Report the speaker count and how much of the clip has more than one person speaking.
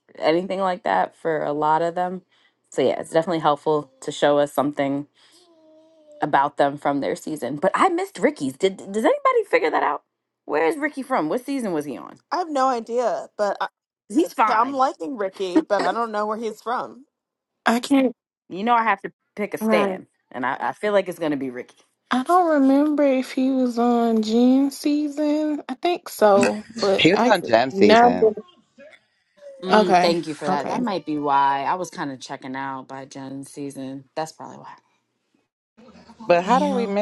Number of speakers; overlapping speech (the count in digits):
4, about 9%